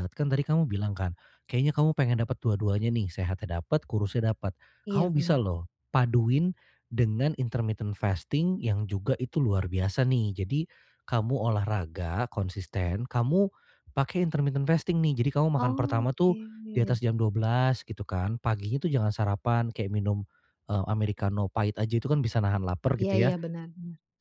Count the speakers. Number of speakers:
2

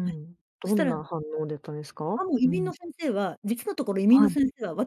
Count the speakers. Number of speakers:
2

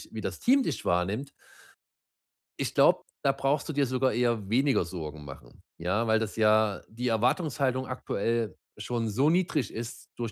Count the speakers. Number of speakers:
1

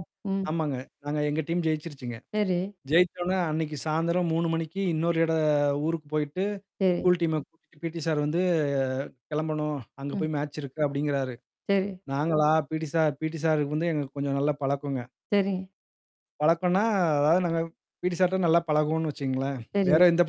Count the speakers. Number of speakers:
2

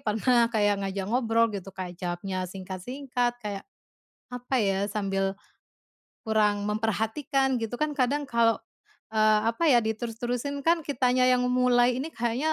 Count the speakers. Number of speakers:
1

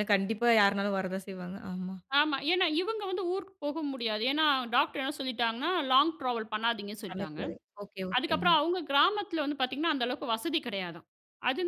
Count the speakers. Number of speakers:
2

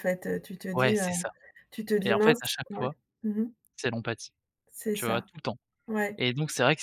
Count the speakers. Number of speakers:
2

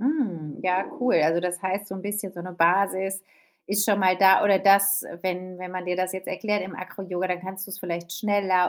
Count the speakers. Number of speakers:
1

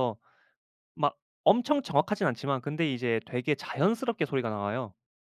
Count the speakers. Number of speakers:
1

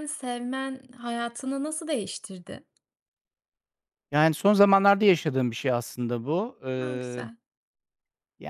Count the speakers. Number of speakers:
2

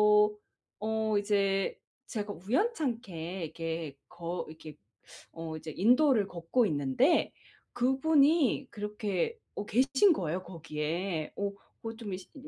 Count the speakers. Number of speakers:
1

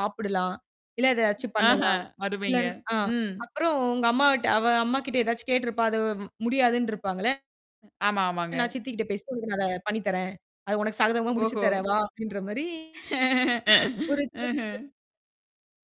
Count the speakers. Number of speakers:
2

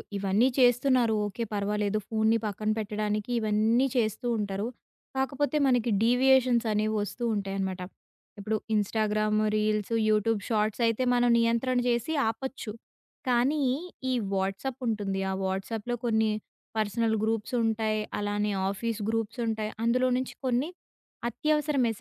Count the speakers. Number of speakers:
1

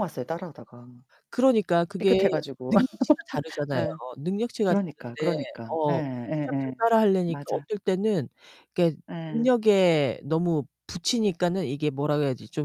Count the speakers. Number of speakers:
2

